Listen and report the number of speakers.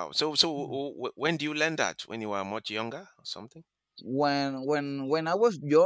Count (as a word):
two